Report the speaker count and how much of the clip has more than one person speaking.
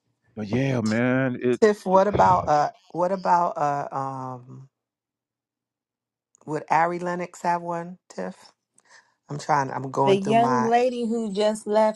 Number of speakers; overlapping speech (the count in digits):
3, about 6%